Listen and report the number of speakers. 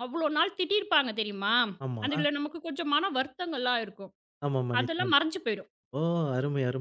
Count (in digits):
2